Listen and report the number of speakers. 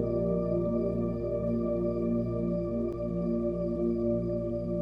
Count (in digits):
0